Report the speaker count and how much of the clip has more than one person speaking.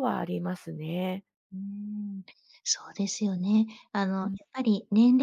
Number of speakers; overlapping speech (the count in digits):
2, about 3%